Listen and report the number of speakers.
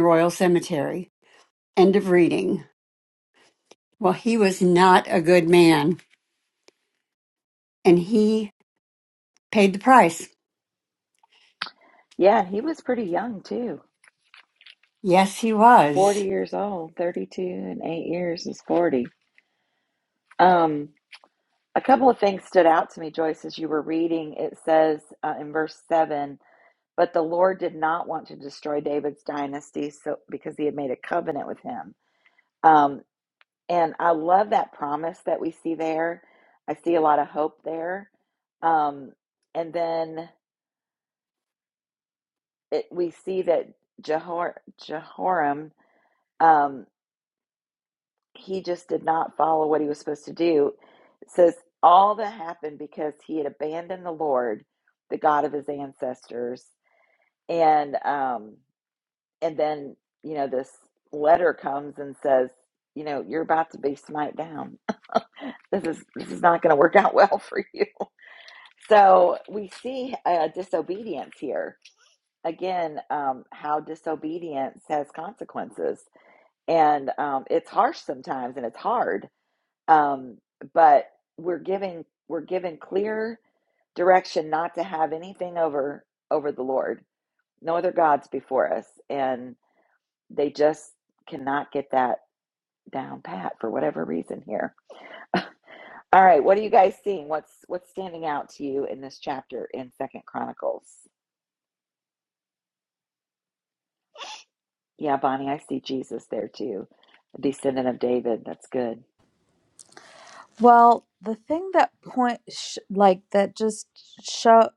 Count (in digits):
3